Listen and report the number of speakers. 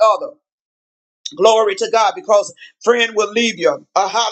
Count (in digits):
1